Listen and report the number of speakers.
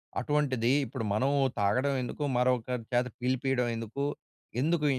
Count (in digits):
1